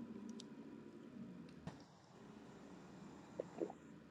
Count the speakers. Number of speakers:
0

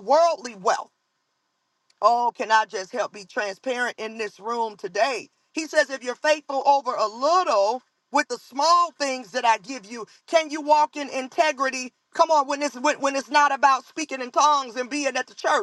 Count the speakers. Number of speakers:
1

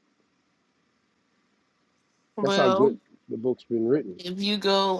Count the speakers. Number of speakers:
2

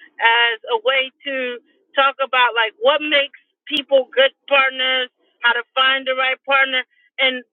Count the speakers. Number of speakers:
1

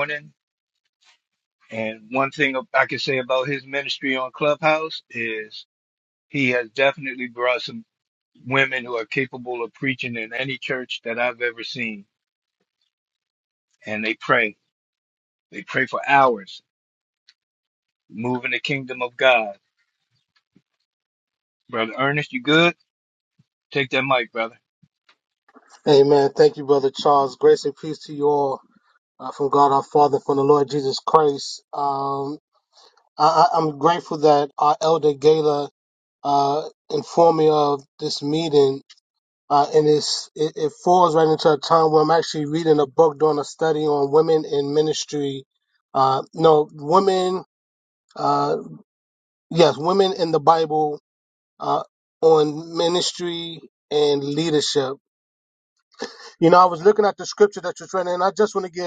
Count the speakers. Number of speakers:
2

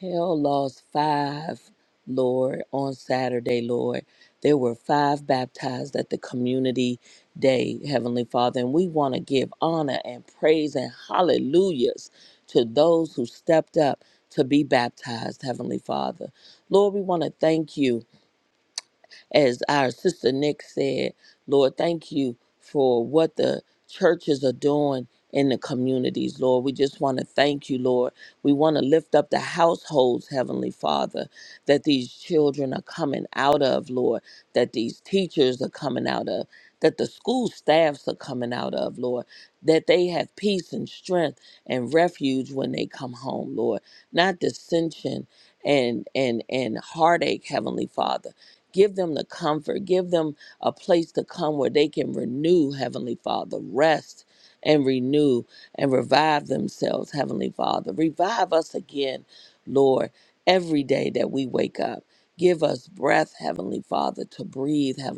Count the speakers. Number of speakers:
1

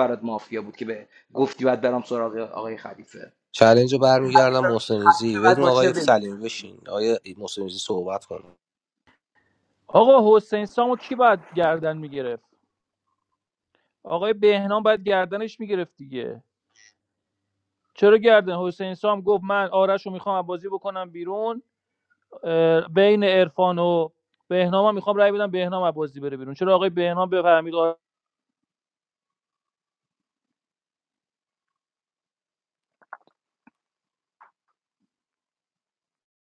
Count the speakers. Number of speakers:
3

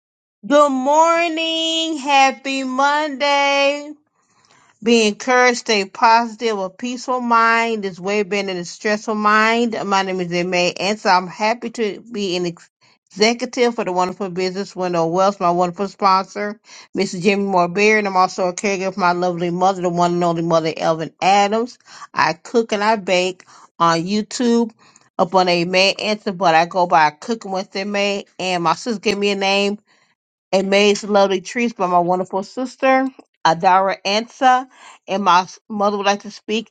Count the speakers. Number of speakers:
1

